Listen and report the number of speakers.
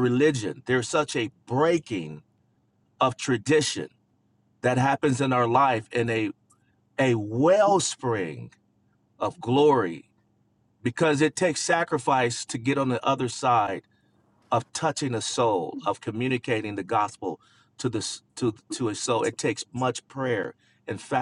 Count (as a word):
one